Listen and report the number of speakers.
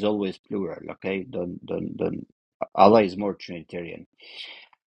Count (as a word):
one